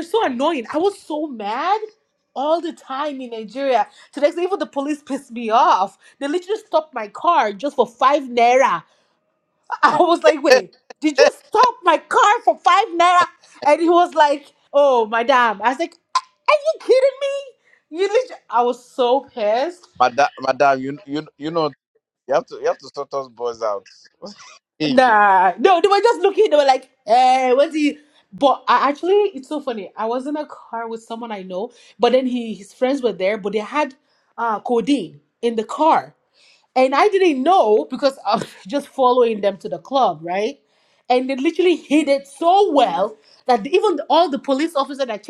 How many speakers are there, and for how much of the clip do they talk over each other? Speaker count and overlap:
2, about 1%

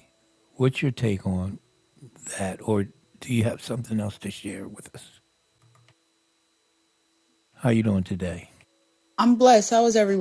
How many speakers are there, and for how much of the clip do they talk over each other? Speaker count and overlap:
2, no overlap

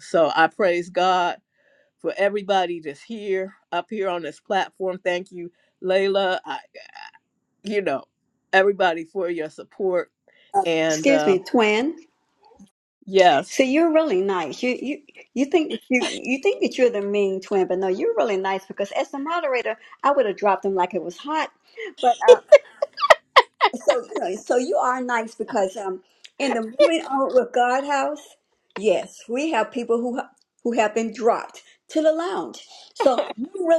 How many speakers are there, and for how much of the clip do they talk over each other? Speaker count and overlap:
2, about 1%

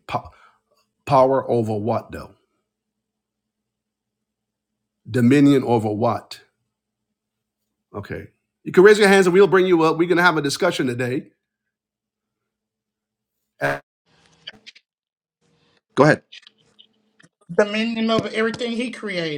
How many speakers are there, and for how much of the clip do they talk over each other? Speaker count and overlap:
2, no overlap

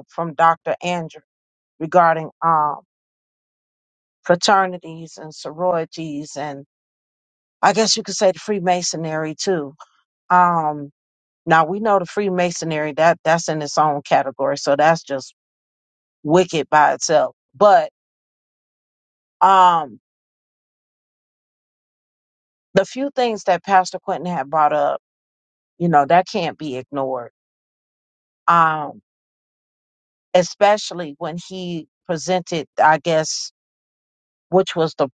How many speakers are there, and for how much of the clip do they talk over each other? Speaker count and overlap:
1, no overlap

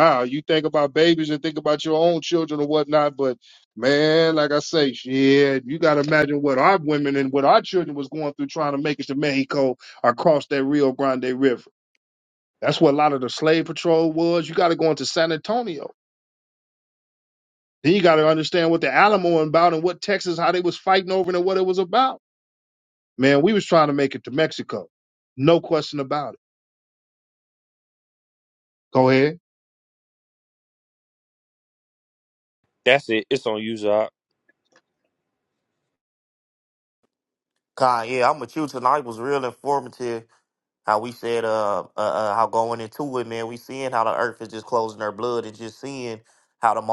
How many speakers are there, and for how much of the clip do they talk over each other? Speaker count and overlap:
3, no overlap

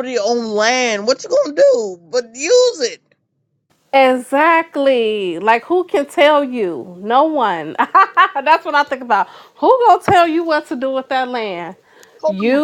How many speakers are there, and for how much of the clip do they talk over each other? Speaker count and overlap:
2, about 2%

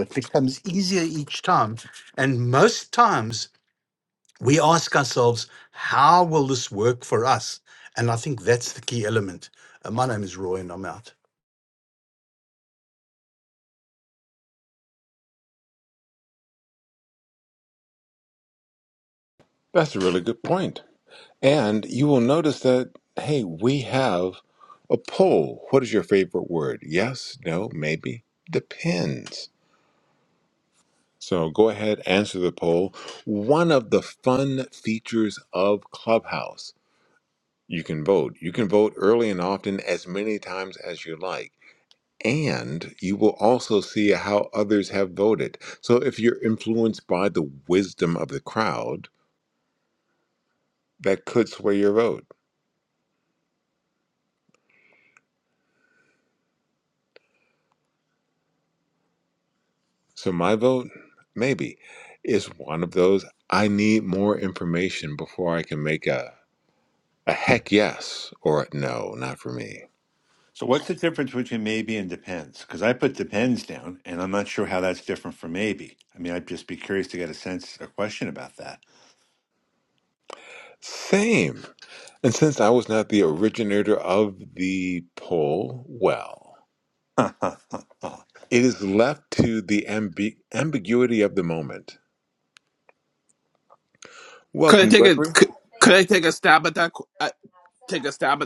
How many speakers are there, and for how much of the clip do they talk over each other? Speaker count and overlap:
4, about 1%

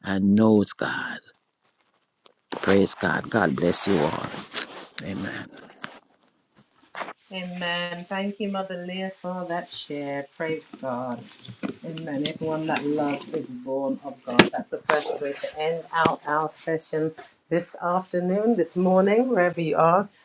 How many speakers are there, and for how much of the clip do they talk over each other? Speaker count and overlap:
2, no overlap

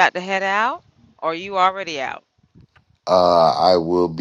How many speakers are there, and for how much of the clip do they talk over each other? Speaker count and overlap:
2, no overlap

